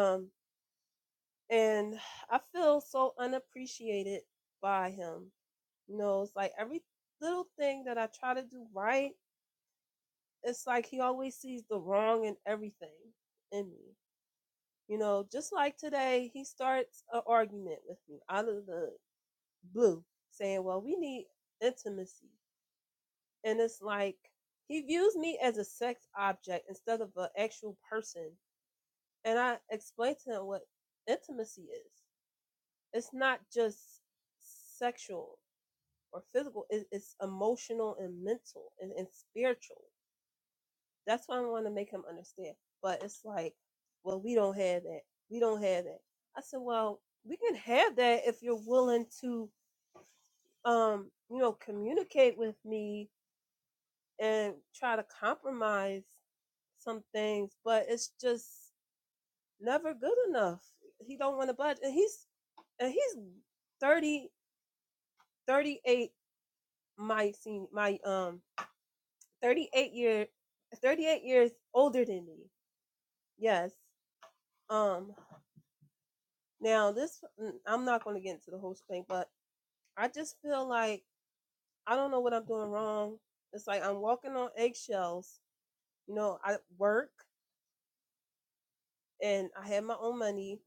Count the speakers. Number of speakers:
one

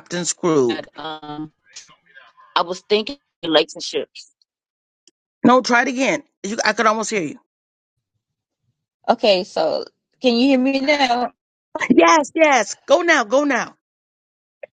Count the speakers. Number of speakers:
two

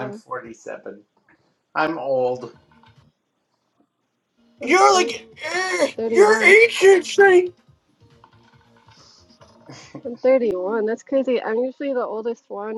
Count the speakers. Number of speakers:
three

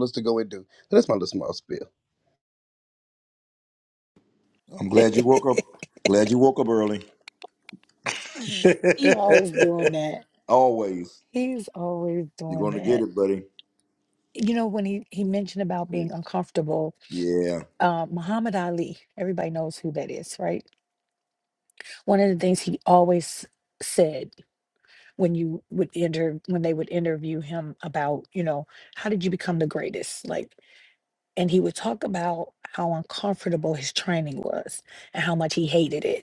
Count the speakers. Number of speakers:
three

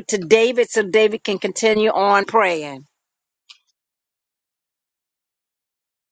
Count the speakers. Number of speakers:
one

